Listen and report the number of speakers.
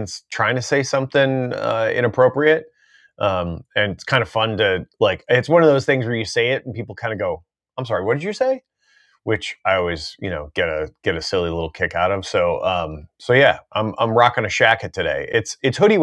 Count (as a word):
one